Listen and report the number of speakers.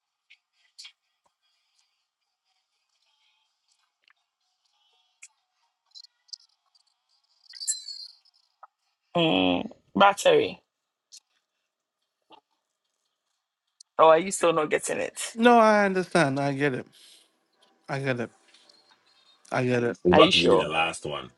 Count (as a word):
three